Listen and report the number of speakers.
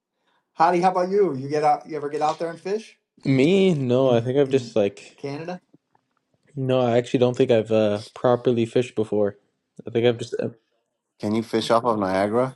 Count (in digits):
3